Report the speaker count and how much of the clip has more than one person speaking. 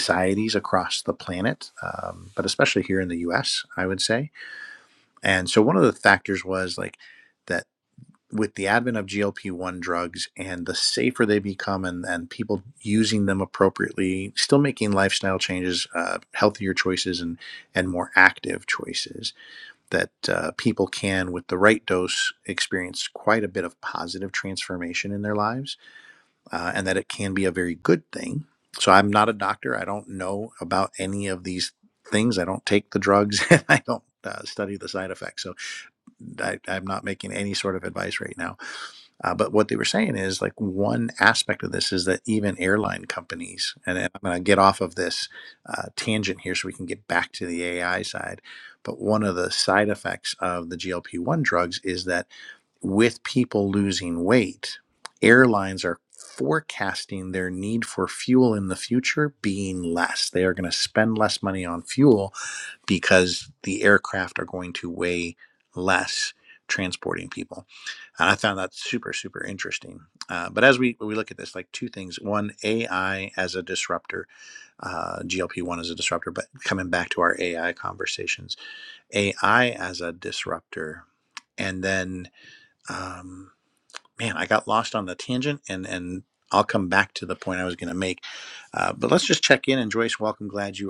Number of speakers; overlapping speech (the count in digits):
1, no overlap